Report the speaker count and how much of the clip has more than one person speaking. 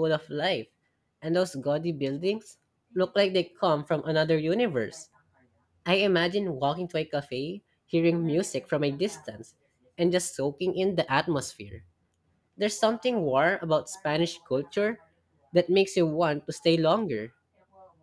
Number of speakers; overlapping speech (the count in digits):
1, no overlap